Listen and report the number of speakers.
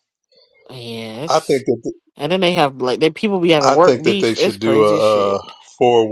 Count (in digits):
2